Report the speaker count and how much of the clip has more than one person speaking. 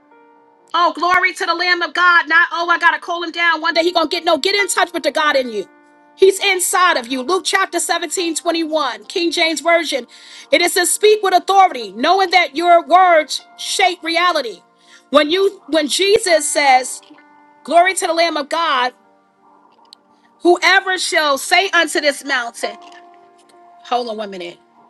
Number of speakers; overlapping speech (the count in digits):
1, no overlap